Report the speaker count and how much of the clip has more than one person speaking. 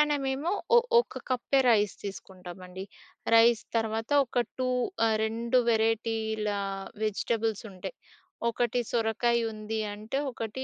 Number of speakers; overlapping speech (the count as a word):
one, no overlap